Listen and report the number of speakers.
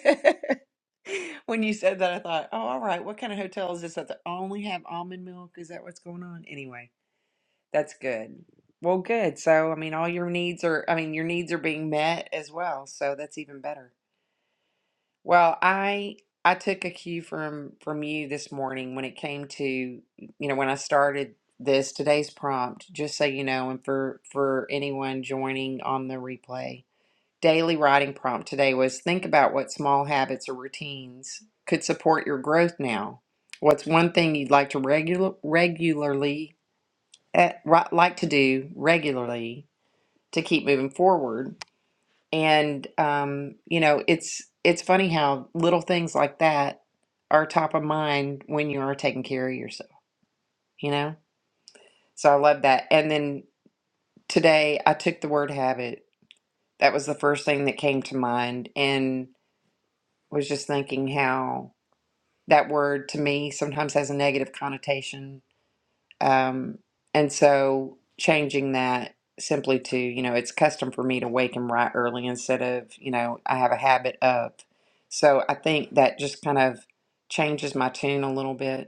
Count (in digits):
1